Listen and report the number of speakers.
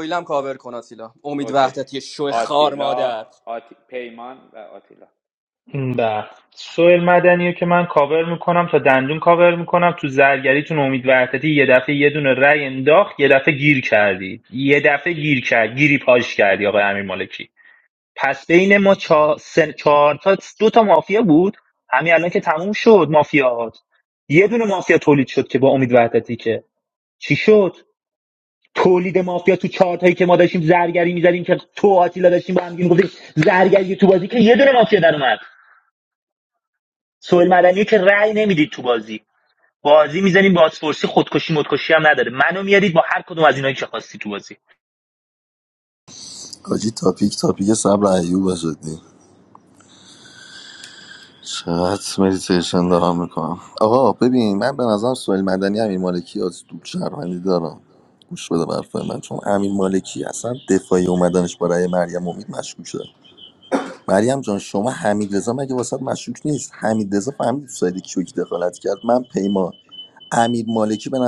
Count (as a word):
four